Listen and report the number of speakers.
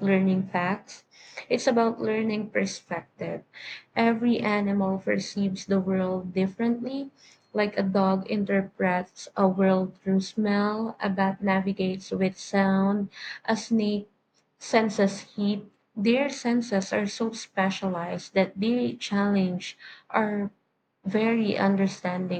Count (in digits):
1